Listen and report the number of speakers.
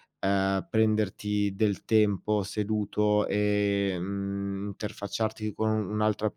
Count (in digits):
1